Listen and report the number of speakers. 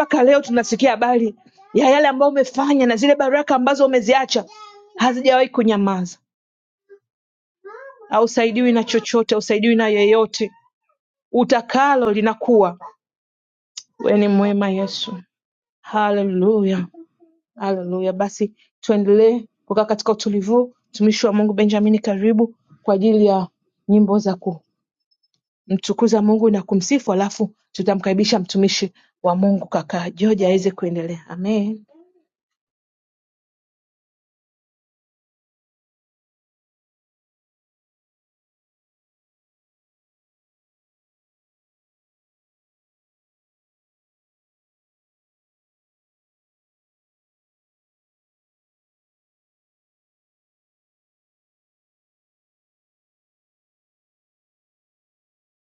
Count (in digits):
1